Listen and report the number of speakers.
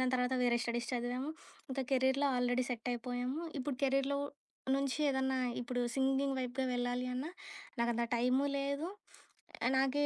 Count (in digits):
1